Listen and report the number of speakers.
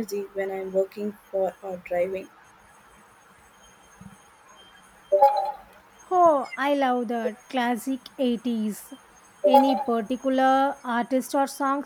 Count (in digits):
2